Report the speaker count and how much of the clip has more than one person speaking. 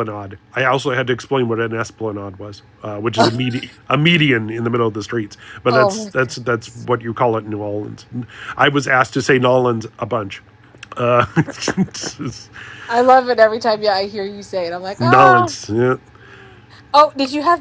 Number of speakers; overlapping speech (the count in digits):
2, about 5%